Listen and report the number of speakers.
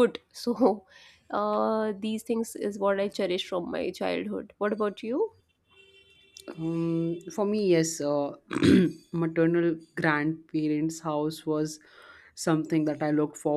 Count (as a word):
two